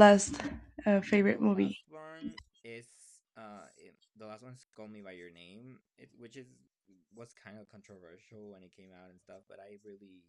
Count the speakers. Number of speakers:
2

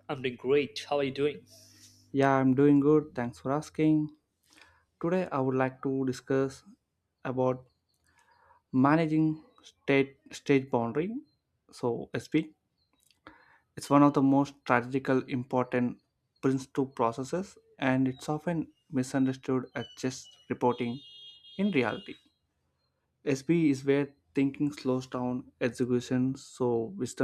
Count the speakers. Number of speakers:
2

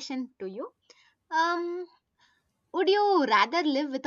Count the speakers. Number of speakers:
1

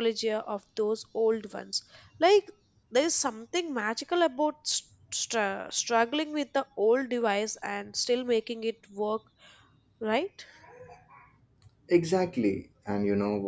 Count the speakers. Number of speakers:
2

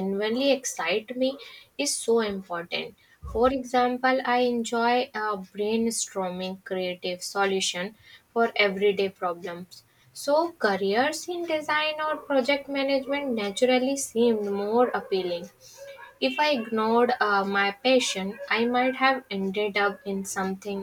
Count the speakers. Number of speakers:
1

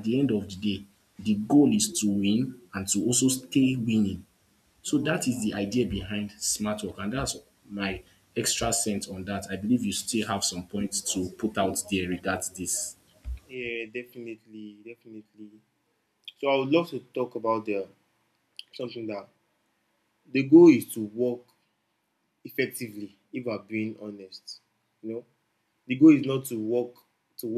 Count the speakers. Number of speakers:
2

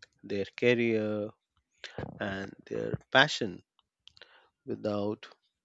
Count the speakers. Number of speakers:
1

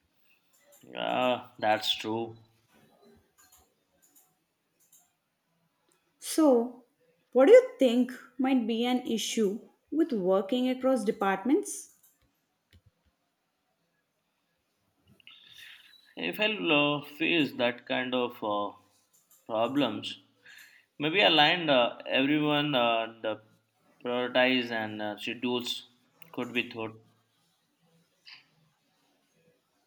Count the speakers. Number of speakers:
2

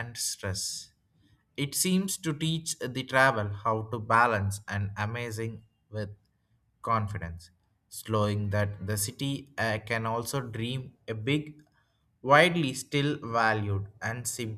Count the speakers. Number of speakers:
1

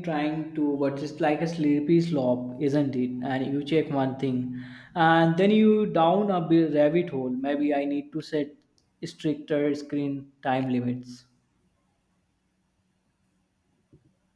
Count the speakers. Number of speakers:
1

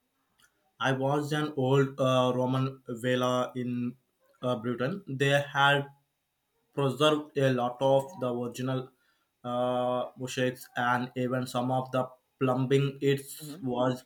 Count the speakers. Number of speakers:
1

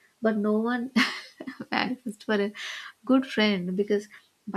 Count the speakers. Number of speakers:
1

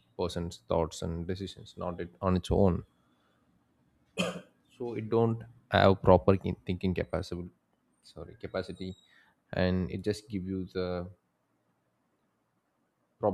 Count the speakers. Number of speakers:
1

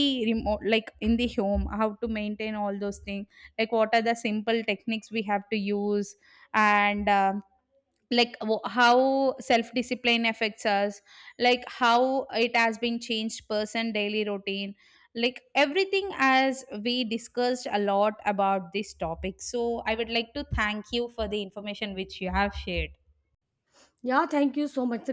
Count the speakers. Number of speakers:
2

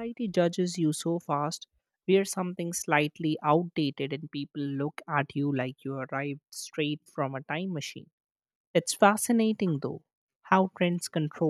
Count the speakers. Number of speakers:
1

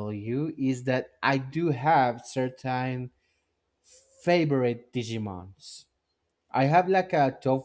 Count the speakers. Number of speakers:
1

